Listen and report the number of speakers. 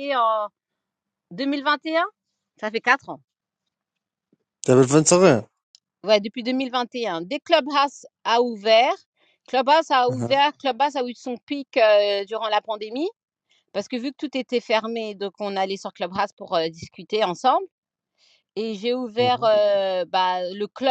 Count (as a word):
two